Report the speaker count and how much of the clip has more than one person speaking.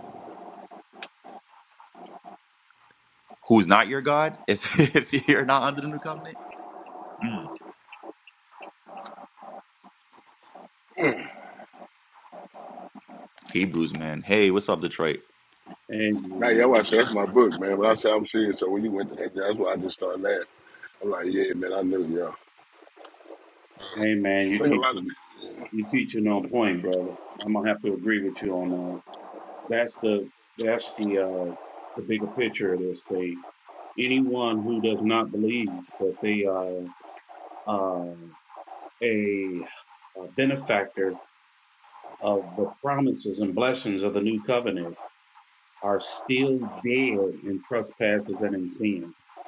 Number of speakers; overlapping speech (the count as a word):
three, about 2%